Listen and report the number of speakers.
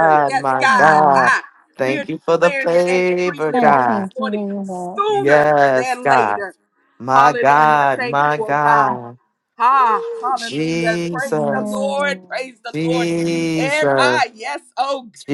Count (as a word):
three